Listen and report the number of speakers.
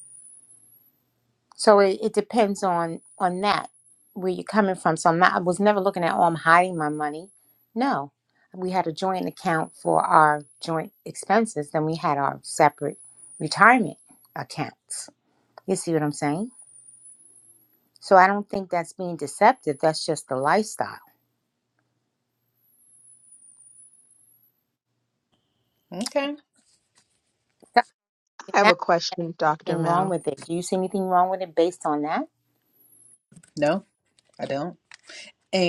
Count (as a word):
three